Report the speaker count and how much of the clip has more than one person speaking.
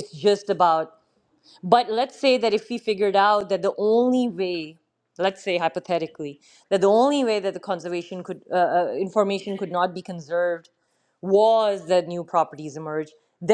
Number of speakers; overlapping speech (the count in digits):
1, no overlap